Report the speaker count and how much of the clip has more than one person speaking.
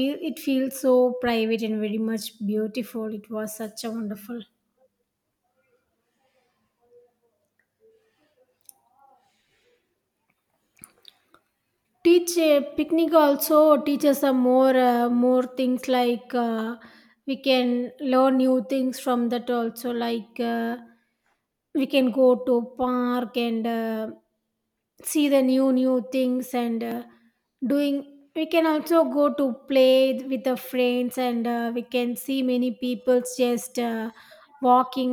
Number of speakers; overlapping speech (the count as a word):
one, no overlap